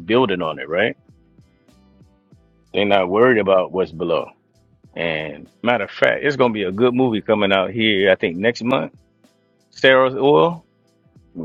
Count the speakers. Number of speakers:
1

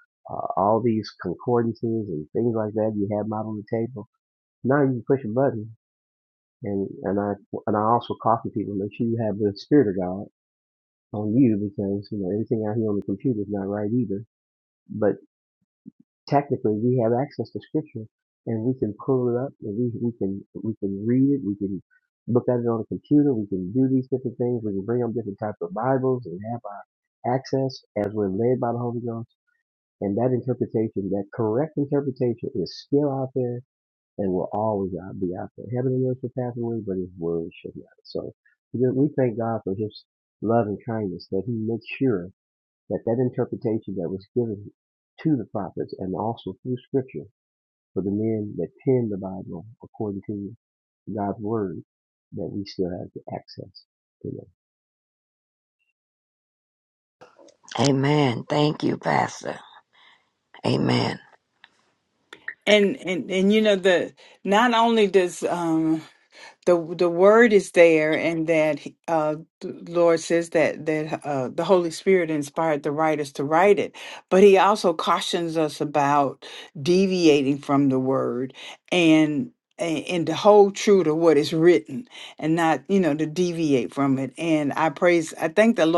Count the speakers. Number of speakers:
3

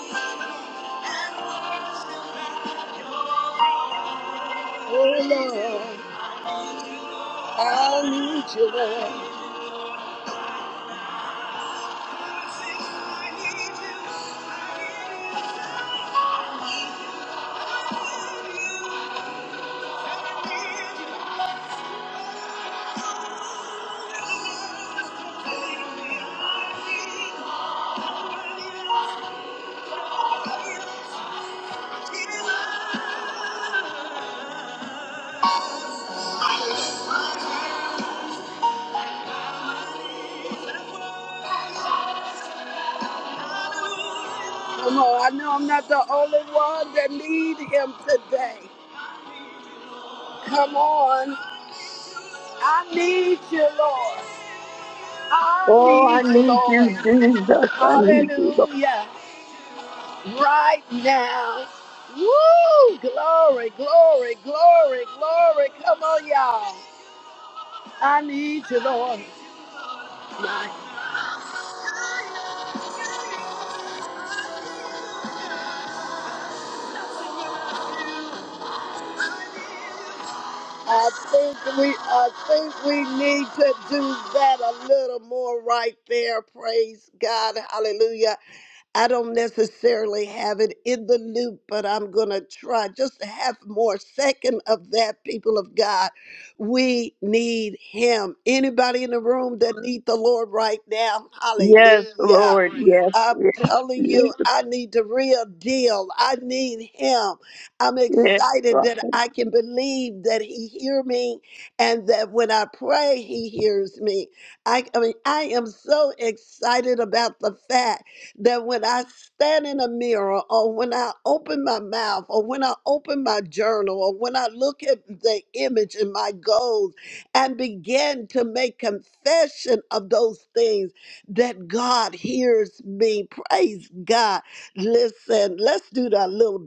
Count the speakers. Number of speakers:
2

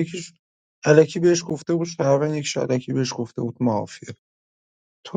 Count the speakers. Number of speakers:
1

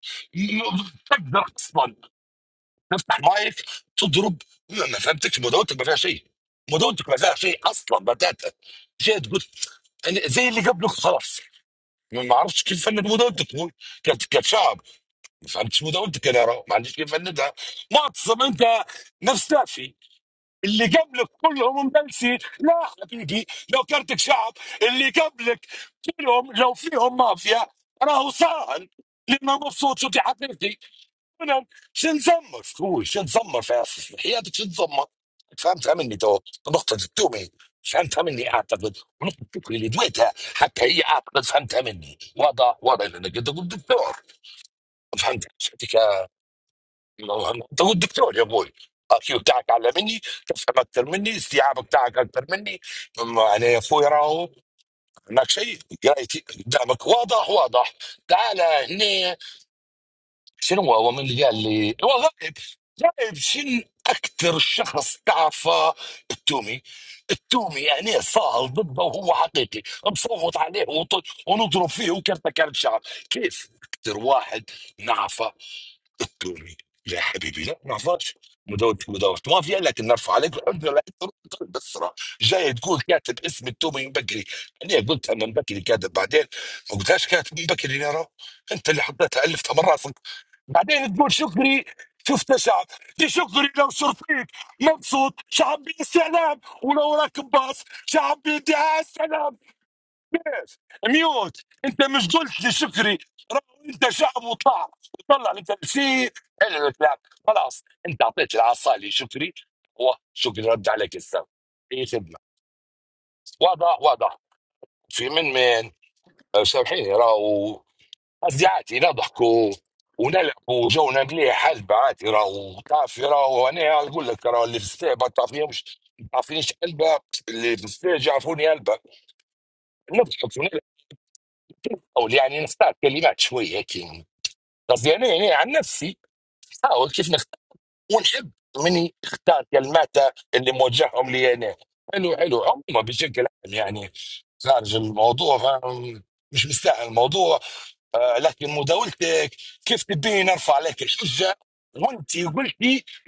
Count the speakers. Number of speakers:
1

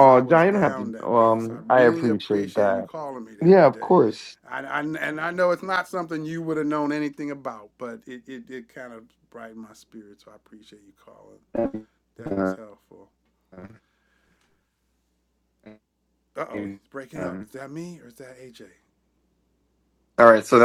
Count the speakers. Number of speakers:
2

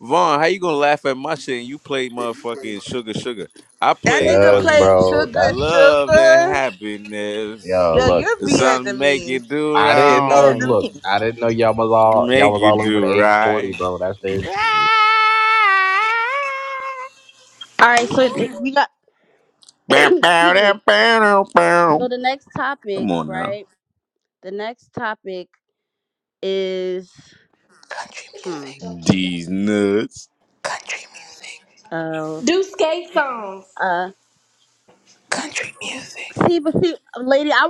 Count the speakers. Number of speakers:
5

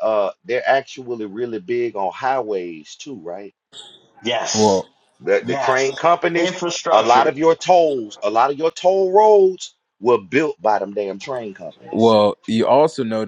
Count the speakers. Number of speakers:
3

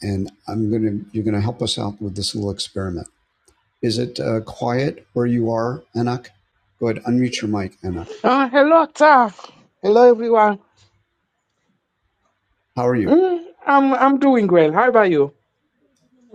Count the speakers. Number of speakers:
2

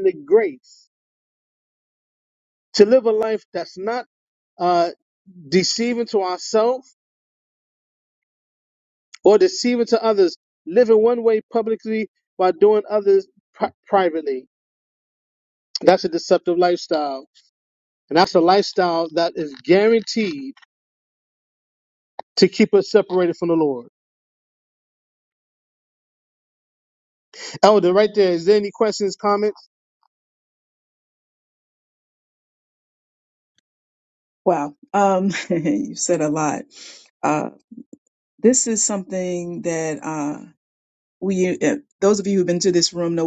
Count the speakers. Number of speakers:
2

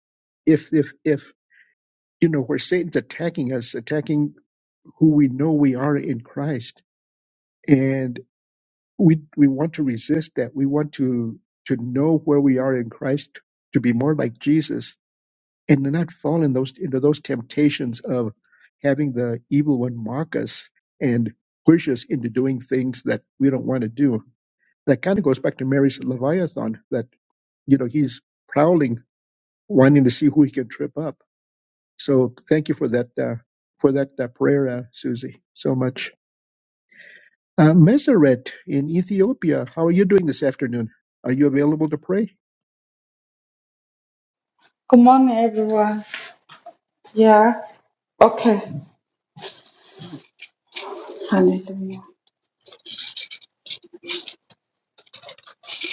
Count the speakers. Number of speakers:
2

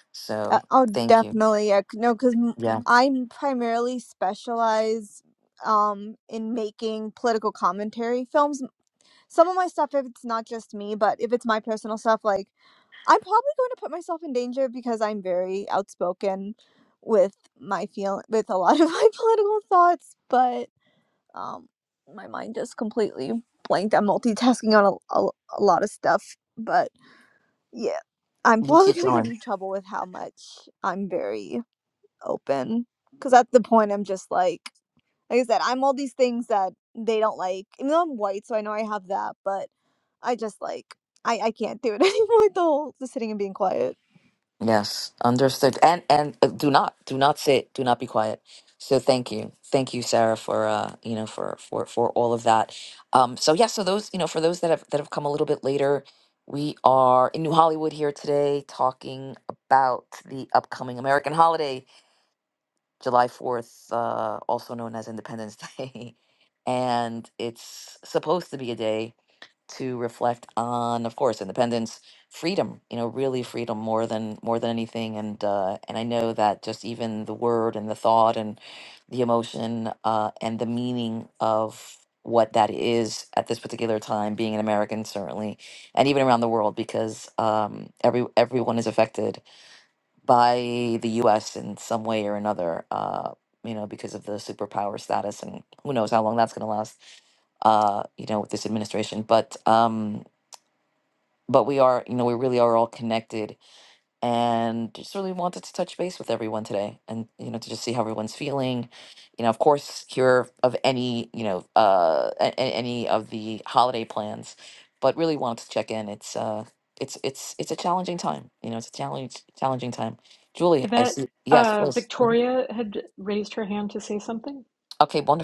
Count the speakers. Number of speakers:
3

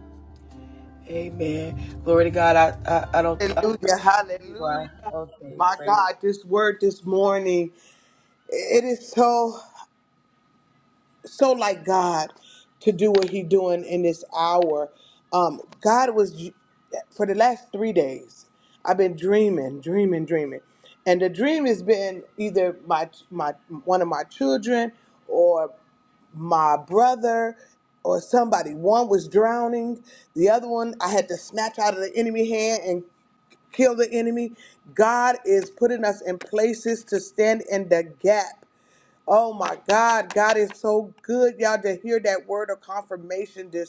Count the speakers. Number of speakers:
2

